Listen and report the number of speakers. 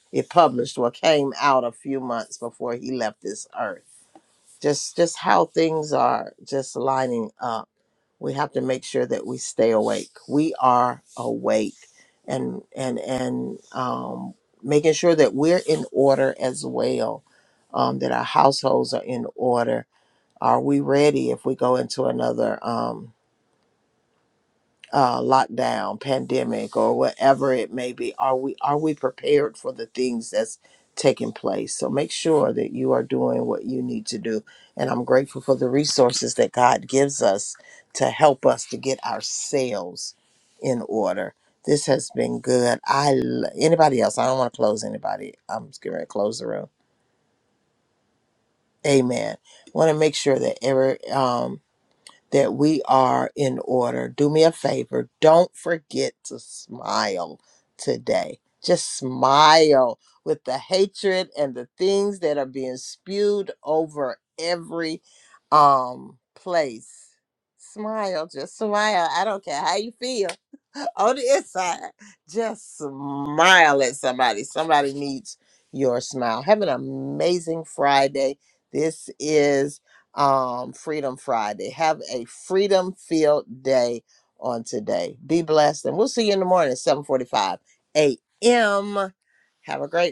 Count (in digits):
1